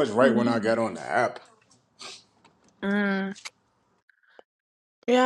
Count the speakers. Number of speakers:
2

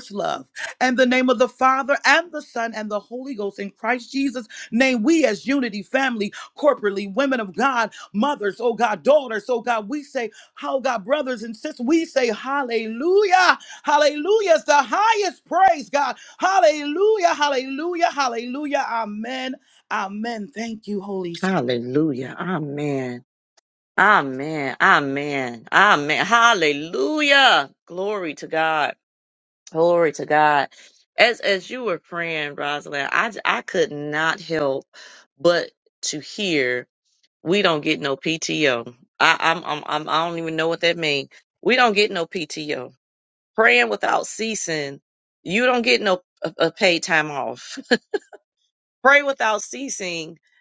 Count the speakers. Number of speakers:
2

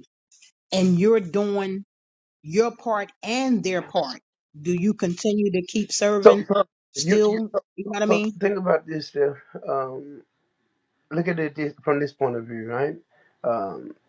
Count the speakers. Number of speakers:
2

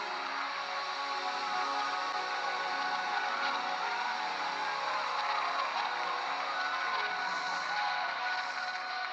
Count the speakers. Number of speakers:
0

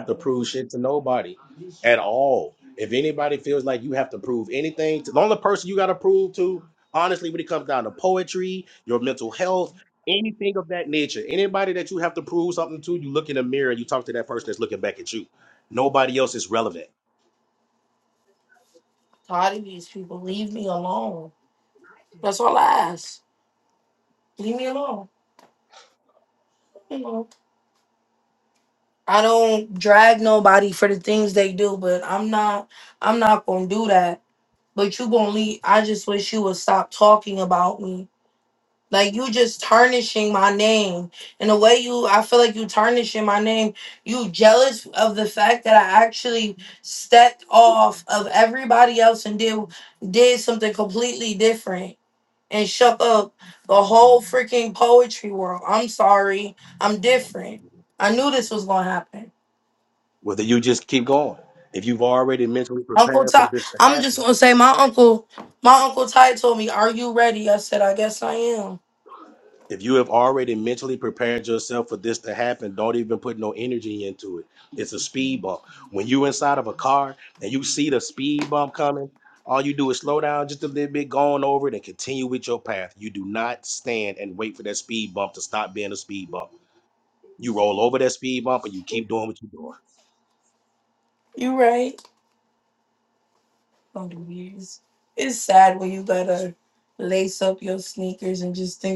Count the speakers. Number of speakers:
2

